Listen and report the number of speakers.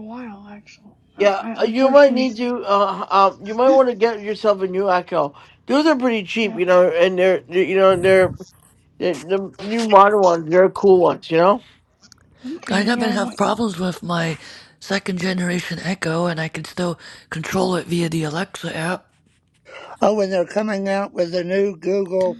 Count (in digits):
4